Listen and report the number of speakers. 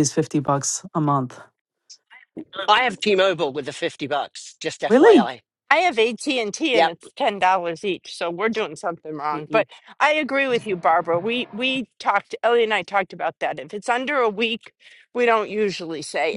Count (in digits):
3